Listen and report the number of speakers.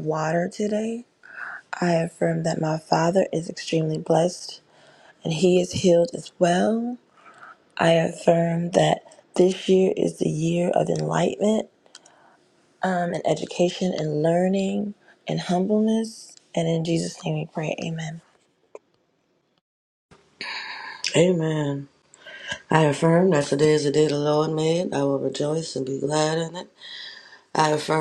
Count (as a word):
two